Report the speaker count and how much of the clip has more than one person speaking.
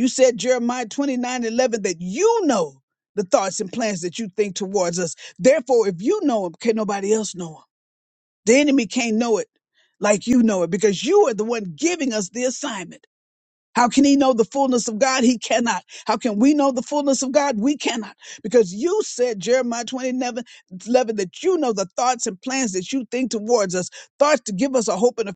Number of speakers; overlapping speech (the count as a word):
one, no overlap